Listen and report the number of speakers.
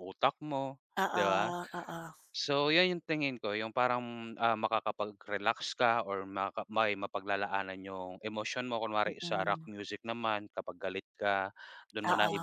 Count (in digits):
2